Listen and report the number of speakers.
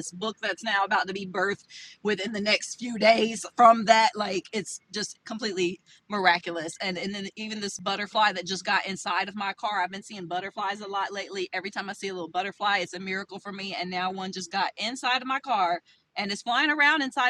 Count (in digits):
1